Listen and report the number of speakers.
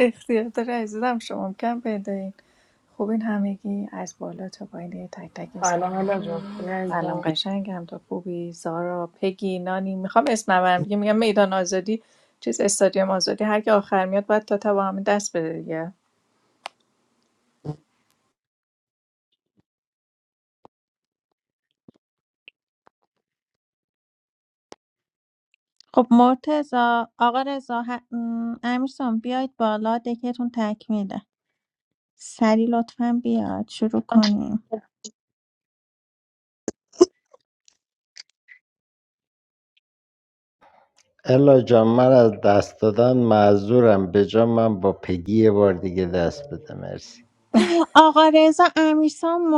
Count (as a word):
four